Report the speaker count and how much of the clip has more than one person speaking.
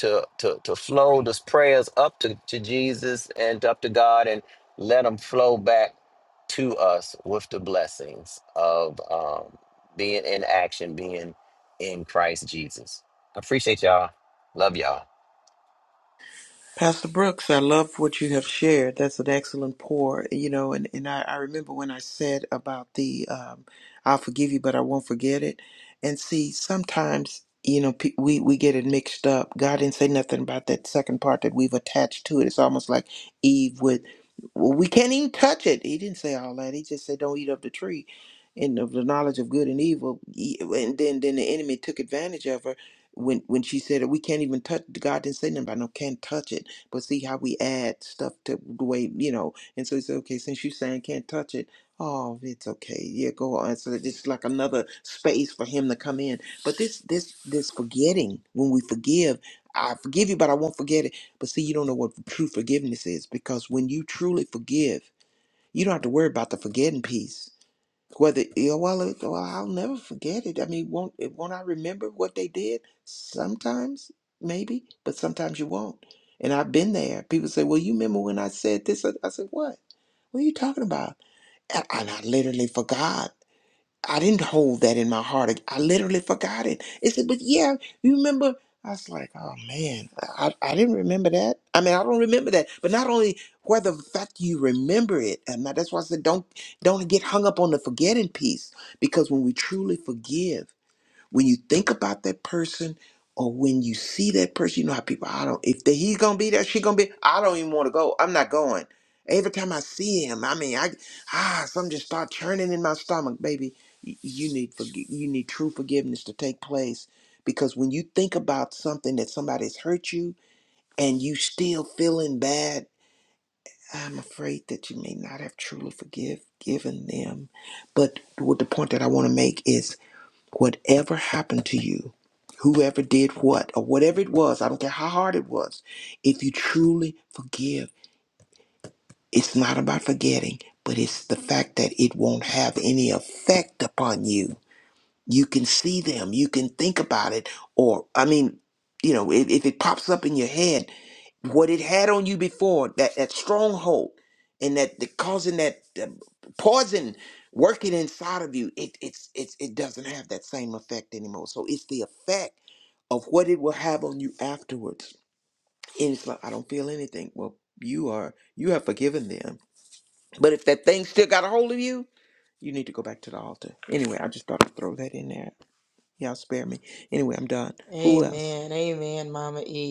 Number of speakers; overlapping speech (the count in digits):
3, under 1%